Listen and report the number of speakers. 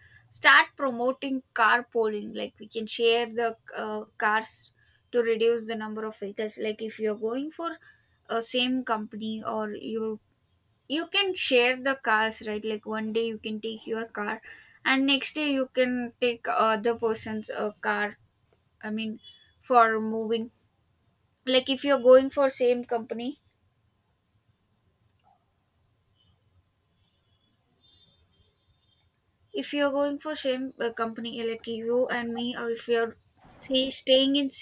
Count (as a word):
one